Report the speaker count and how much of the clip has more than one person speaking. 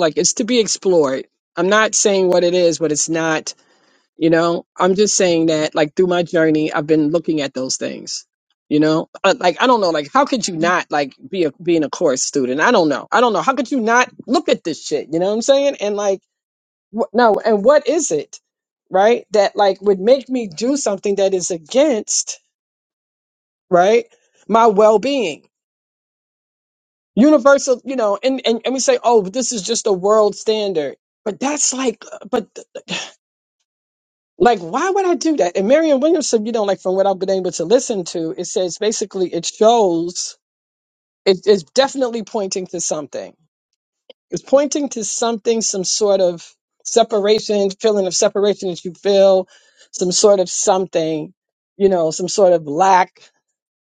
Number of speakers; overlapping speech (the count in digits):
1, no overlap